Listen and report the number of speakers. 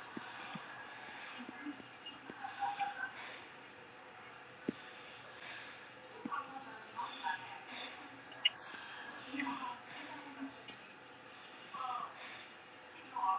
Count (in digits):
0